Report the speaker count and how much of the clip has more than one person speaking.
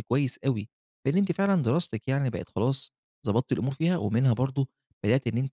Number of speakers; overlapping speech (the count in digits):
1, no overlap